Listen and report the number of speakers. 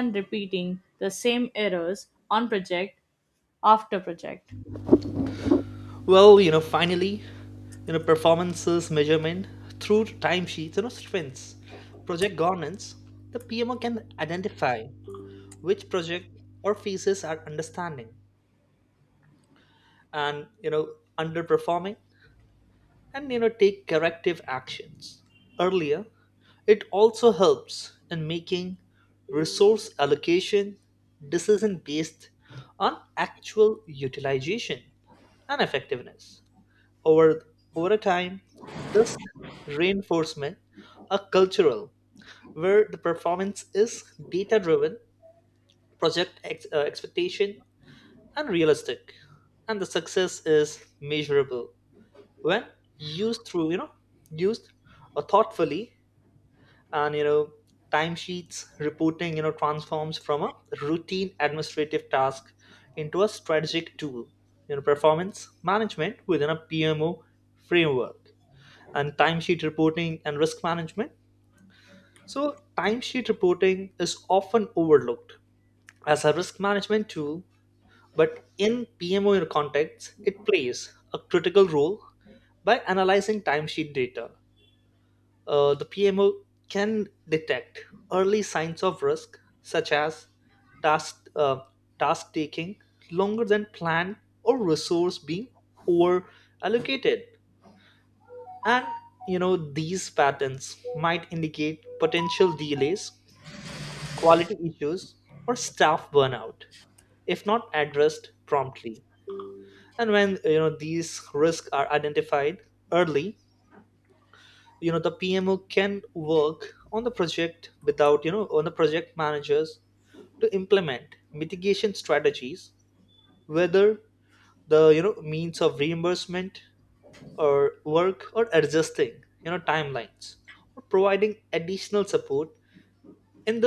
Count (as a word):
two